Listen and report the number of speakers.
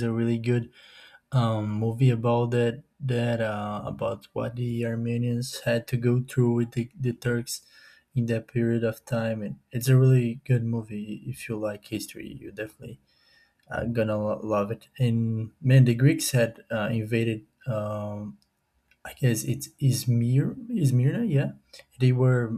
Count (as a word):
one